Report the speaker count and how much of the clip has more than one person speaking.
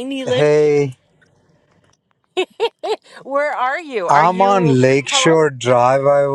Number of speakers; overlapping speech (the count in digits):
2, about 21%